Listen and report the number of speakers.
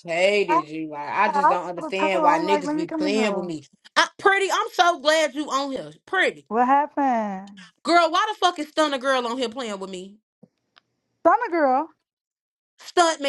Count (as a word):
two